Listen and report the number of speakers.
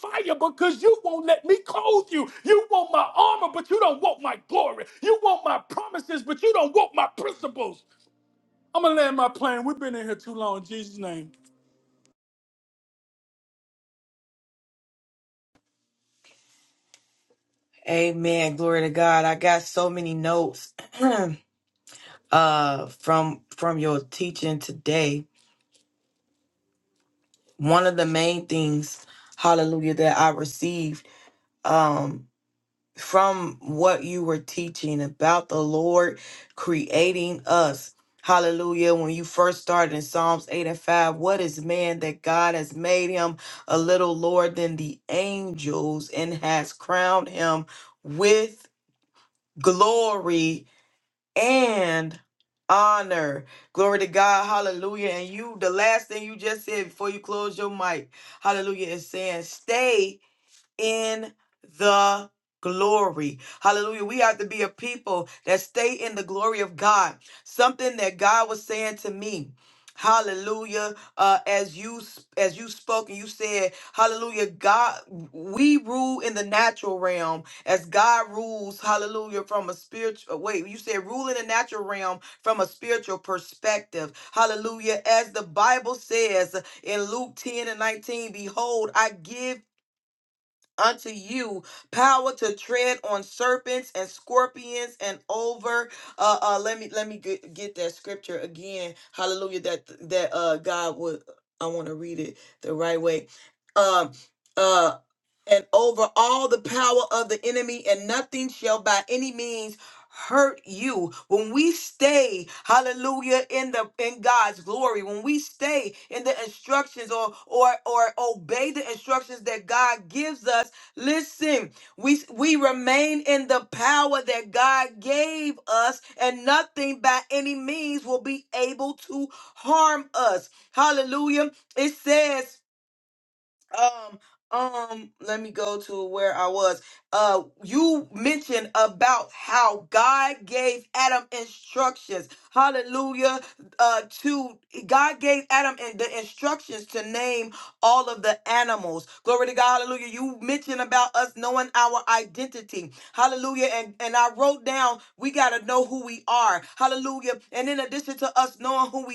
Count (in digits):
2